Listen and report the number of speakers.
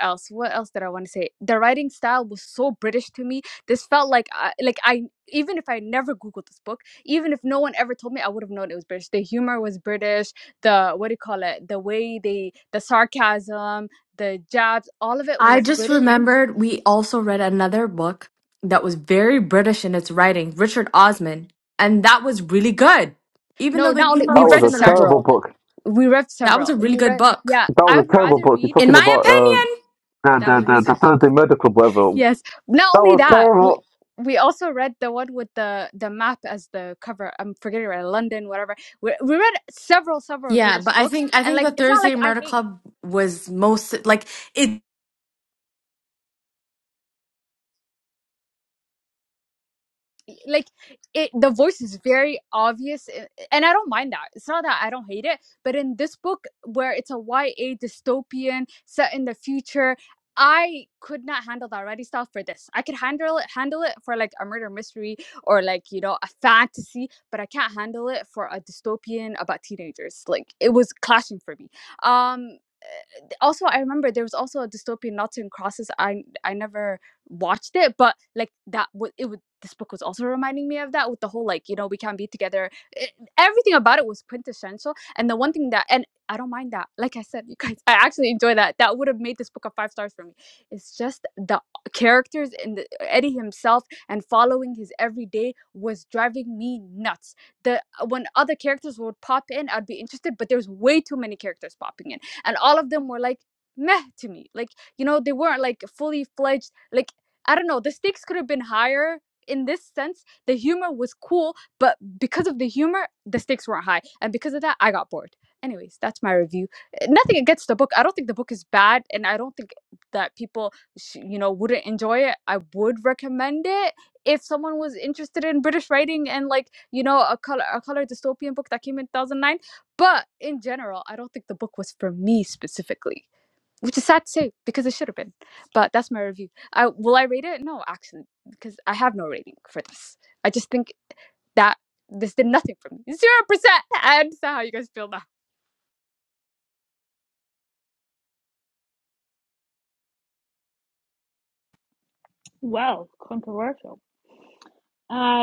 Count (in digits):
4